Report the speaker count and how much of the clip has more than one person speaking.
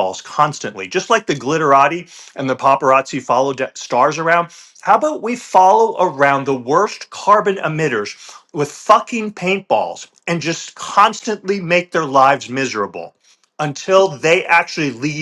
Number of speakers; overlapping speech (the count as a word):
one, no overlap